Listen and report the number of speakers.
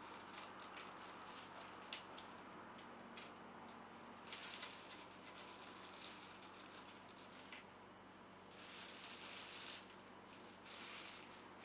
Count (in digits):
0